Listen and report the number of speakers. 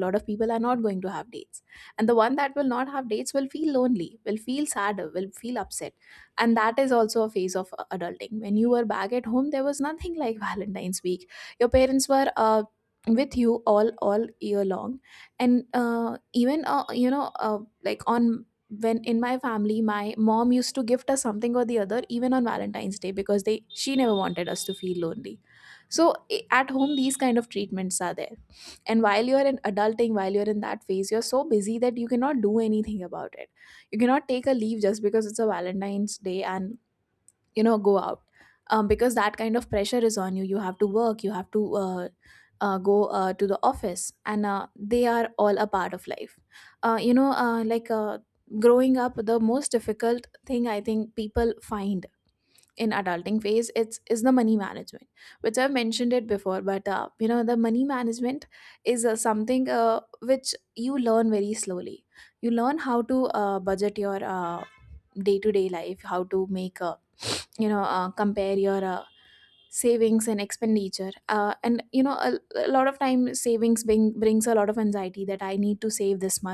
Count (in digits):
1